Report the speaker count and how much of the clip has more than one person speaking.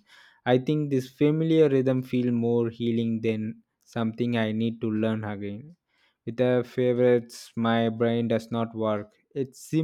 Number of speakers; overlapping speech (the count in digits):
1, no overlap